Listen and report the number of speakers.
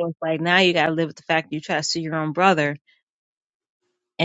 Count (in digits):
1